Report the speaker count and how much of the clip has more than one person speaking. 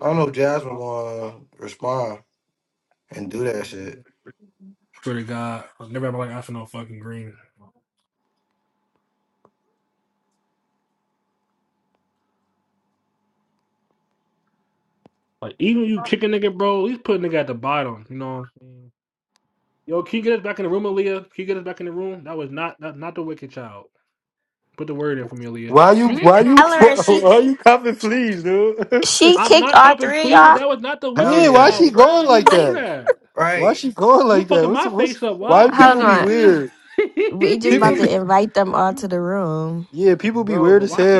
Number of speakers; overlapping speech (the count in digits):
4, about 19%